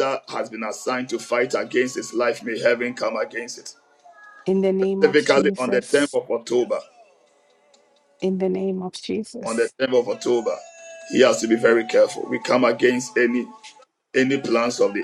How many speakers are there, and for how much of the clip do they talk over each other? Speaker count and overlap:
two, about 6%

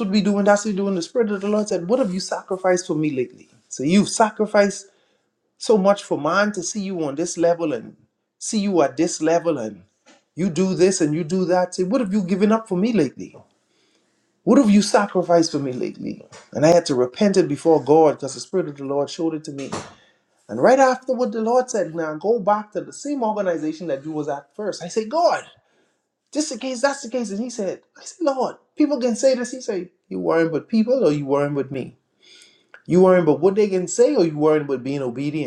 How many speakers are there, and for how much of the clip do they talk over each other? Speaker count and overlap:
one, no overlap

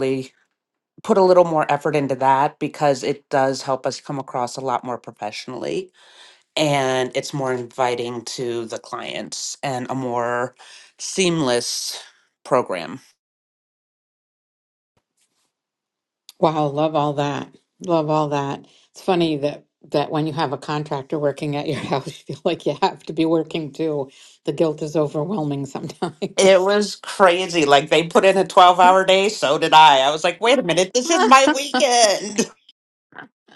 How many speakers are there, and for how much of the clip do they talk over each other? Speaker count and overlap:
two, under 1%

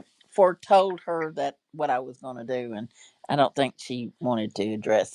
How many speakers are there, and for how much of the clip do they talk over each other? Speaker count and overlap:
one, no overlap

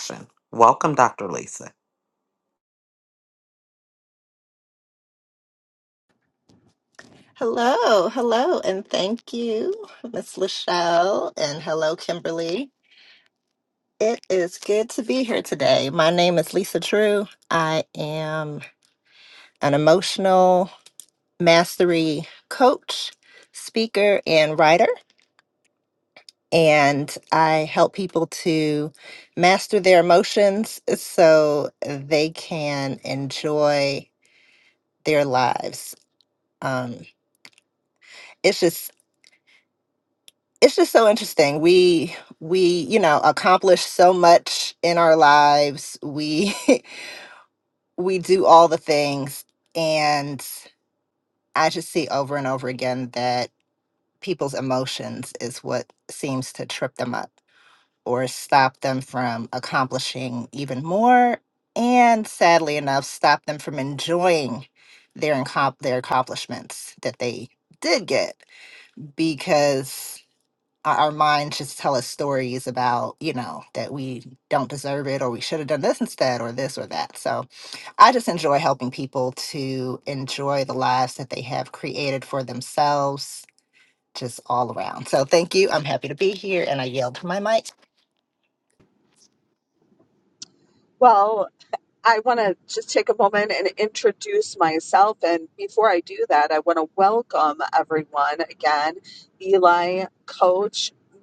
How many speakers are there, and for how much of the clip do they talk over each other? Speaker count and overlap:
three, no overlap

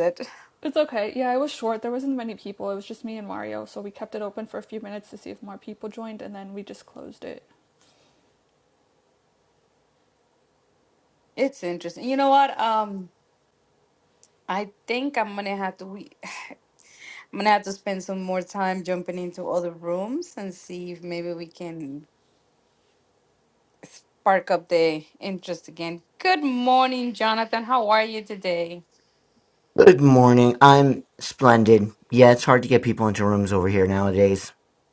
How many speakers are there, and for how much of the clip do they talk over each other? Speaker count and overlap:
three, no overlap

